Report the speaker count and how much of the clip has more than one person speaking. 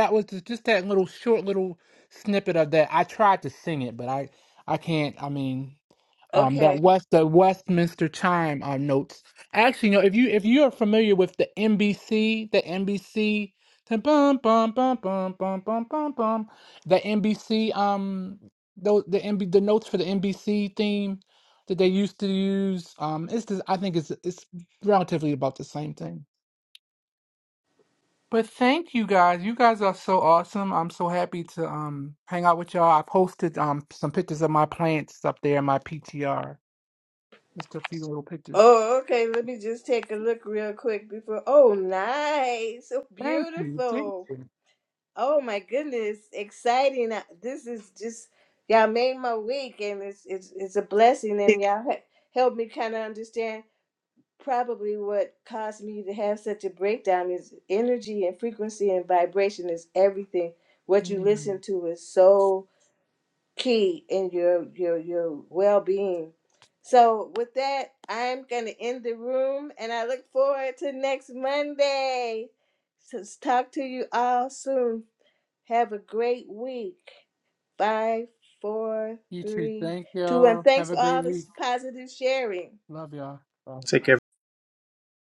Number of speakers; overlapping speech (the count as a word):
two, about 4%